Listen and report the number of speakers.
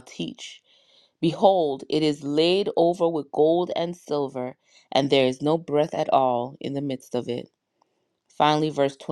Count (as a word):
one